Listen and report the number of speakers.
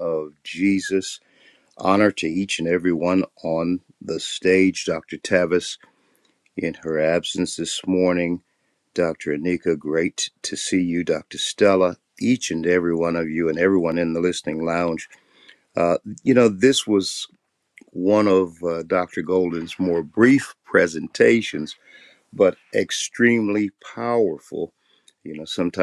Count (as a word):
one